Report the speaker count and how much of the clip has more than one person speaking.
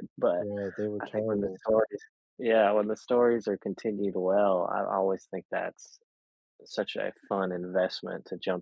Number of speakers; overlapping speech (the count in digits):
2, about 7%